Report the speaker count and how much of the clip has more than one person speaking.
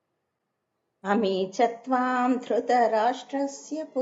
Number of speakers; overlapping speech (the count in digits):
1, no overlap